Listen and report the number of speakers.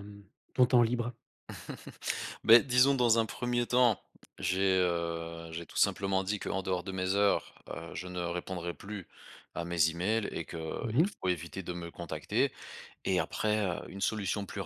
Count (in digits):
2